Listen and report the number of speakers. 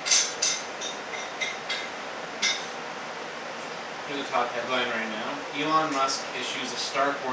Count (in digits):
1